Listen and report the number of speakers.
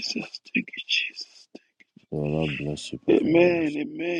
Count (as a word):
two